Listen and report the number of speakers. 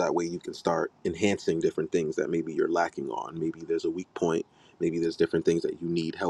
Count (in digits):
1